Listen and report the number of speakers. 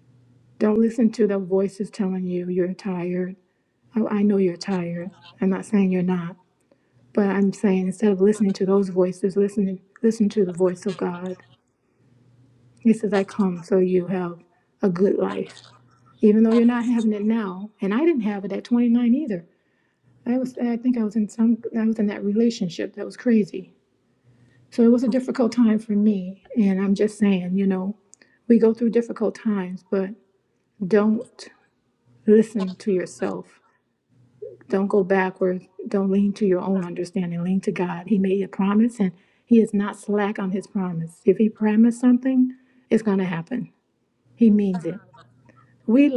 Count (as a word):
one